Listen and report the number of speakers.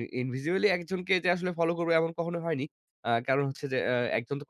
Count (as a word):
one